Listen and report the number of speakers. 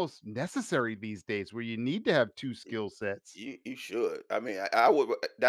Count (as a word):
two